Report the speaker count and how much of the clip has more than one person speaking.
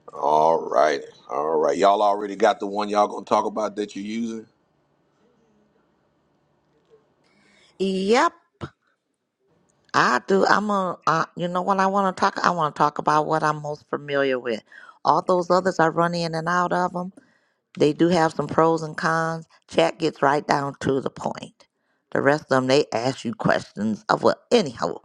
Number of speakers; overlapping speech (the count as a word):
two, no overlap